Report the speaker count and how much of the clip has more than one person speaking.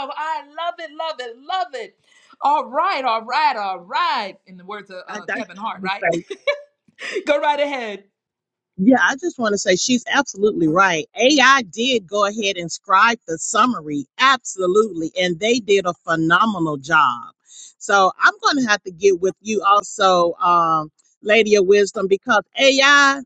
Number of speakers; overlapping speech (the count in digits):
2, about 1%